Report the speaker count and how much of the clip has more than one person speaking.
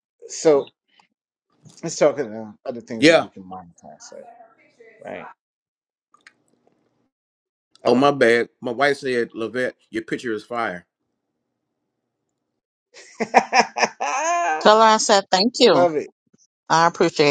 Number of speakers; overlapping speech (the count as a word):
three, about 4%